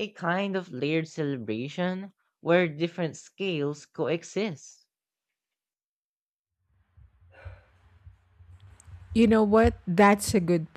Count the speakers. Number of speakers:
two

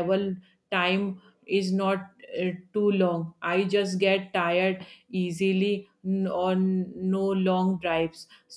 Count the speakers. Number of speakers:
one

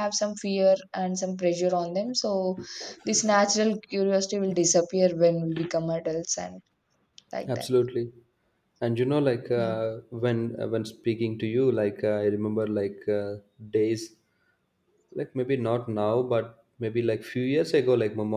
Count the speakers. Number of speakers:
two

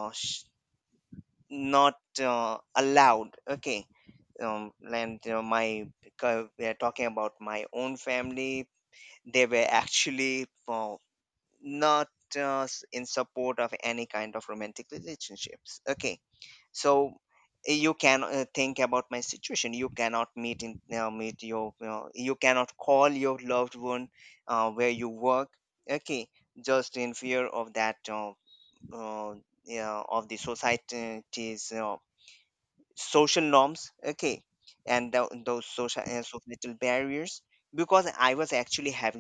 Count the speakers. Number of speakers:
one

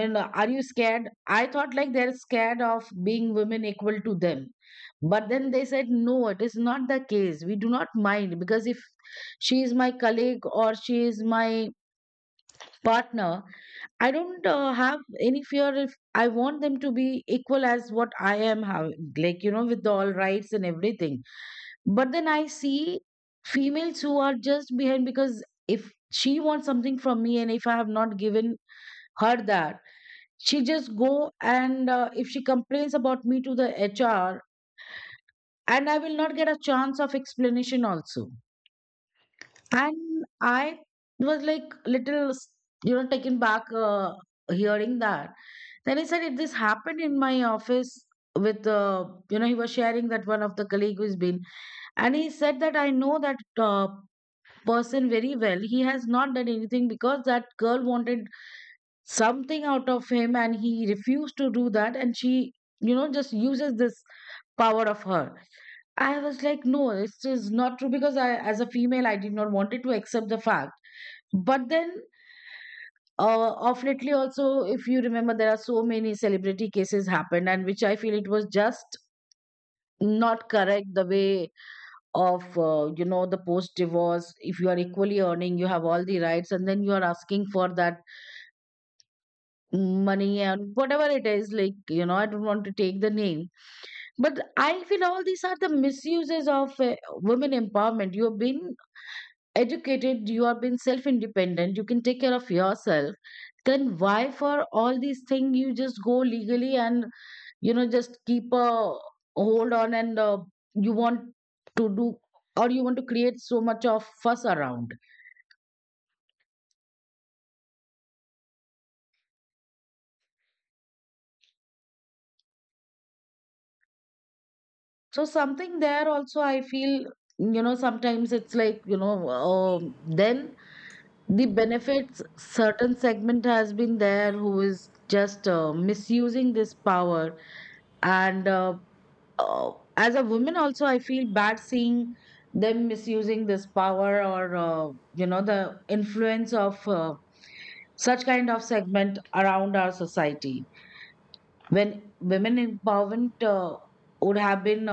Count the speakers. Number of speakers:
one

